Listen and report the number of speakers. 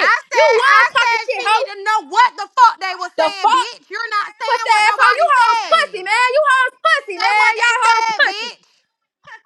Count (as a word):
two